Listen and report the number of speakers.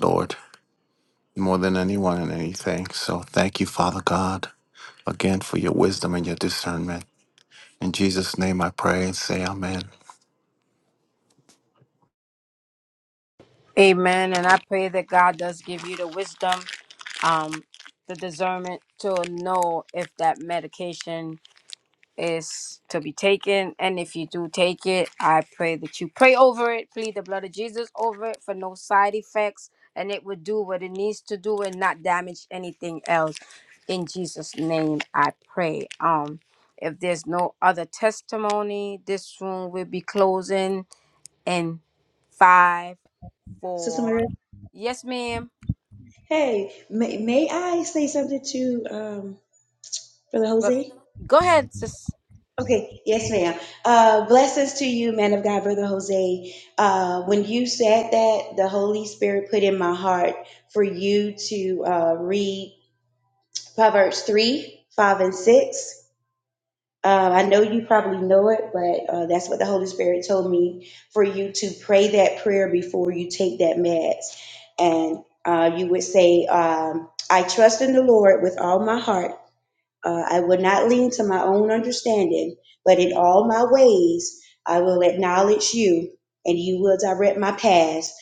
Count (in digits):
3